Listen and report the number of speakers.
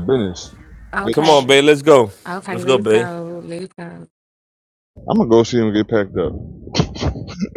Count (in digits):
3